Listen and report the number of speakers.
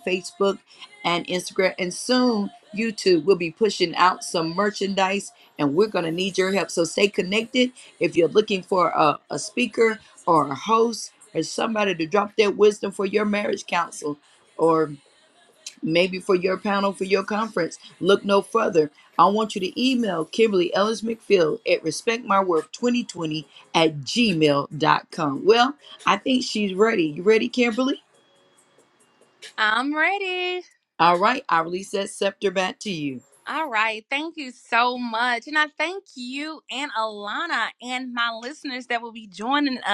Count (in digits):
2